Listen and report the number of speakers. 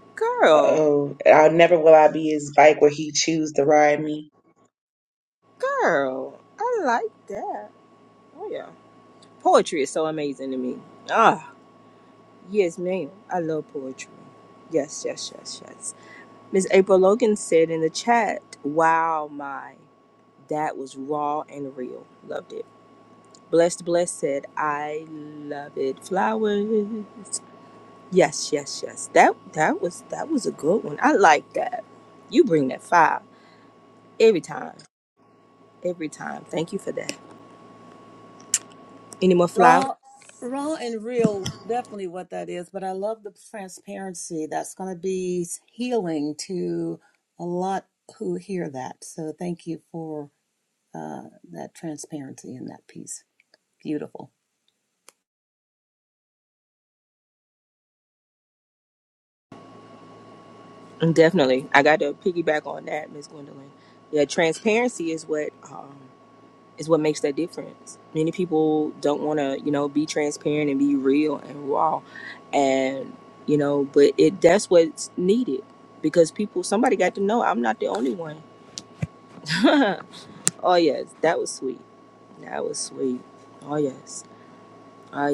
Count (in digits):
3